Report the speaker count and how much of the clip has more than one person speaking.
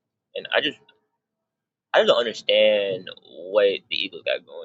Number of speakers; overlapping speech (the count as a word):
one, no overlap